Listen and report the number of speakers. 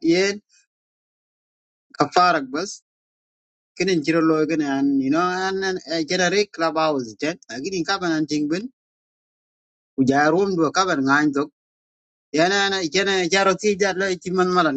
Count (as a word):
one